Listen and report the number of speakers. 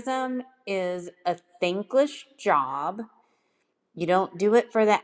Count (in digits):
1